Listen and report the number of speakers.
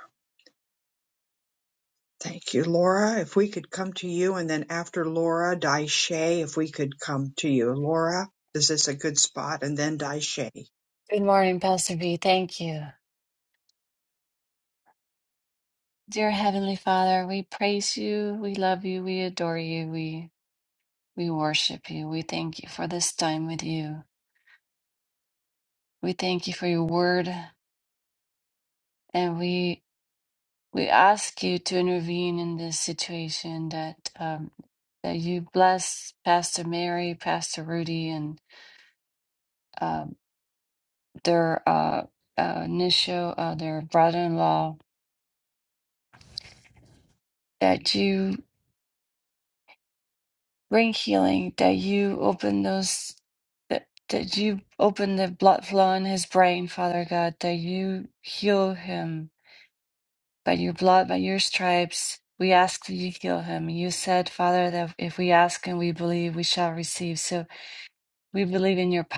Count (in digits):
2